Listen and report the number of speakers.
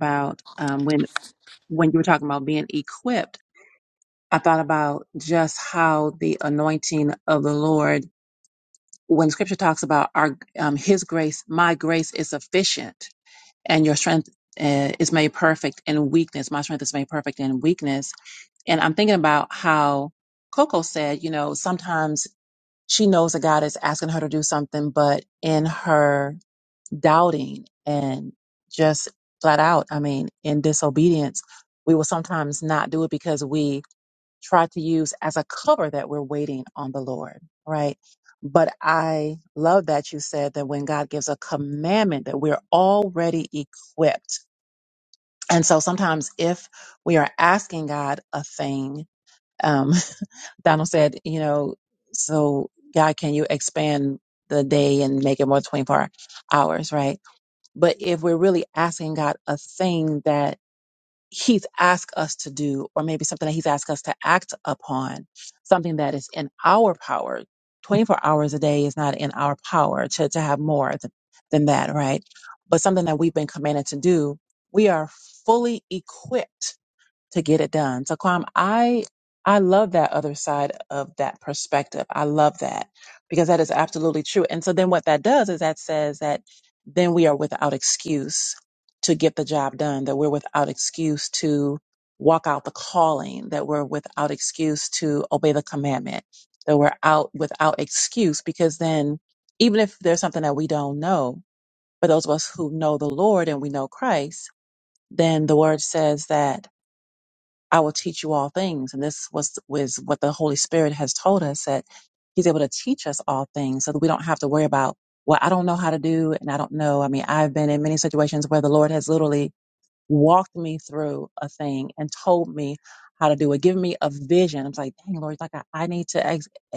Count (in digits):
1